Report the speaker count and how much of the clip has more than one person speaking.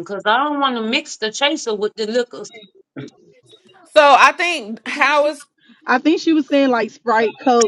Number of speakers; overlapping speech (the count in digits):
3, no overlap